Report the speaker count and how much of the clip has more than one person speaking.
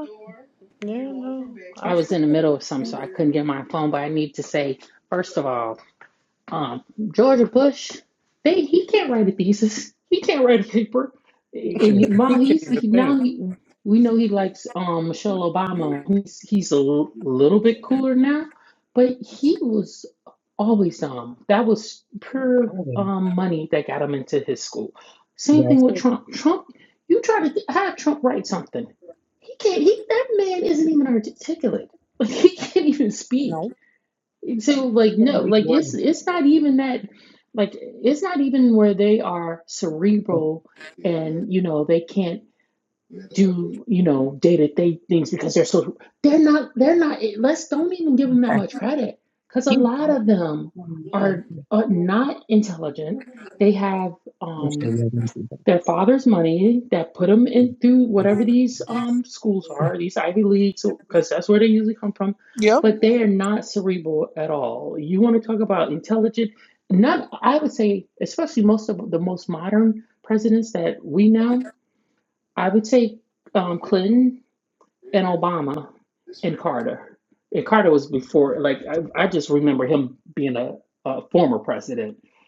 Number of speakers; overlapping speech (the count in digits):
3, about 5%